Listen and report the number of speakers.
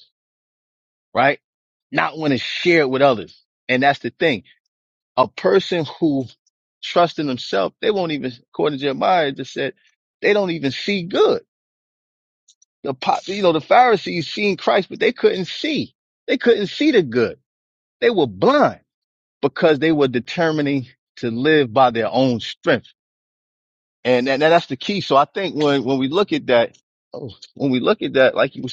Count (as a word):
one